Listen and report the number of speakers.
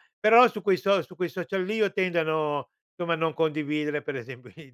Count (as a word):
one